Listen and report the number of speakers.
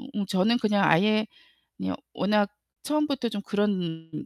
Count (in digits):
1